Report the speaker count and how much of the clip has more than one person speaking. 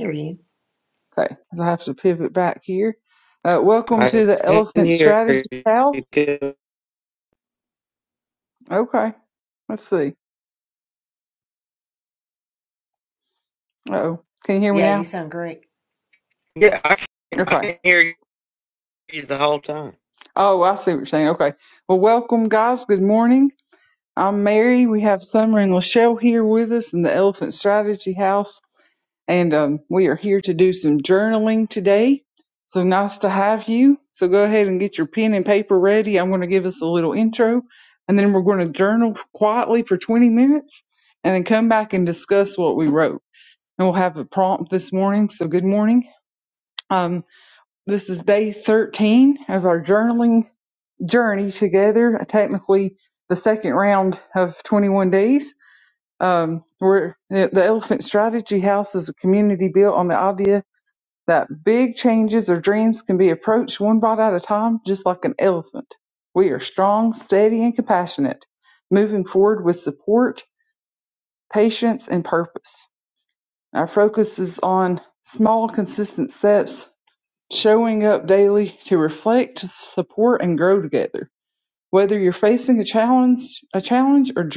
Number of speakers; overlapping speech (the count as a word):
three, about 3%